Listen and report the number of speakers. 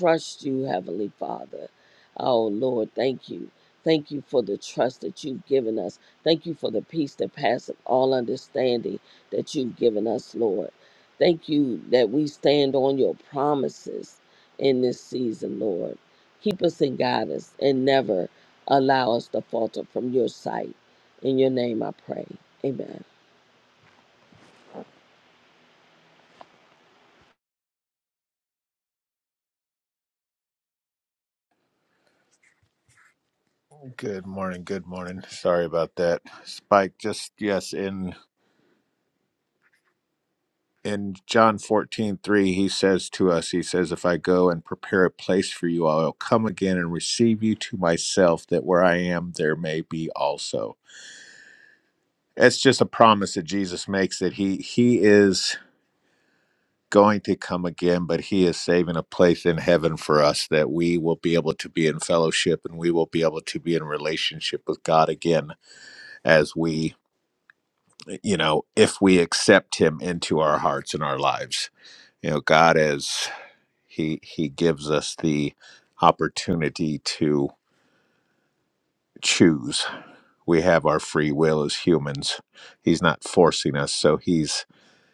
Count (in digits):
2